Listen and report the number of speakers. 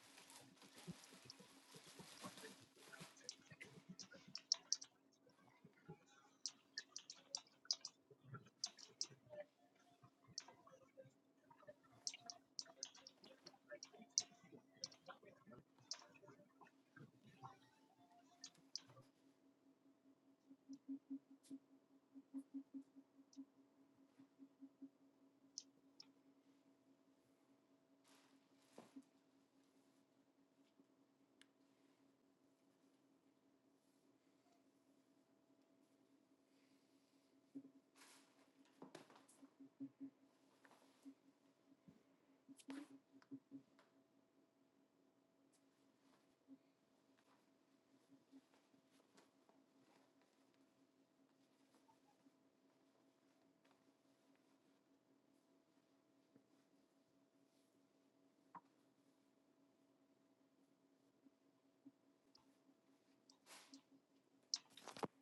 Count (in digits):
0